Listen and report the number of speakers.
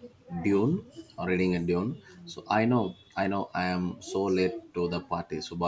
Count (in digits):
1